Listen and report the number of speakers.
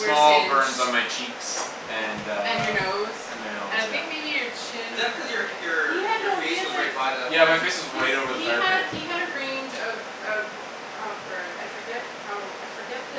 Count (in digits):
3